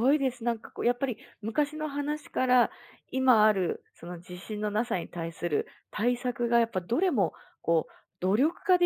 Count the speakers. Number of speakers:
one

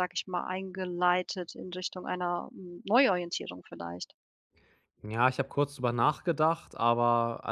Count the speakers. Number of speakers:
two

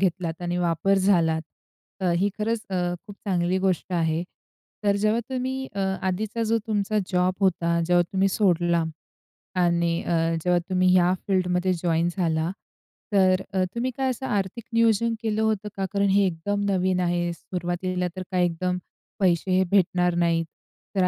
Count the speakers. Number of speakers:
one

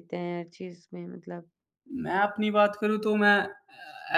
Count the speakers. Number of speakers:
two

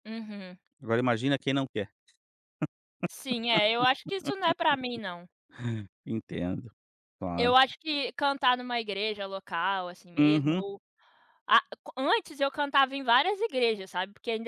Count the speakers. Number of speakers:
two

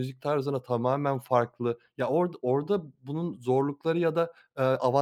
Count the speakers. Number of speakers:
one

